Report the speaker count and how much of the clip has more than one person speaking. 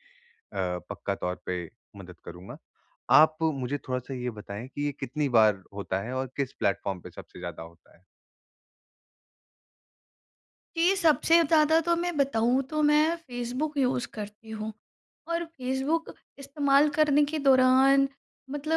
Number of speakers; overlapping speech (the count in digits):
2, no overlap